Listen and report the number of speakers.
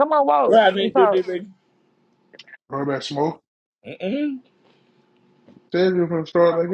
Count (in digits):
3